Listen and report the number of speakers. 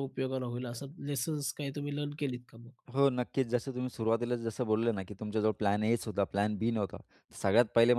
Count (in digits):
2